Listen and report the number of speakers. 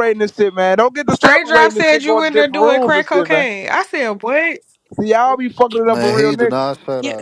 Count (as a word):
three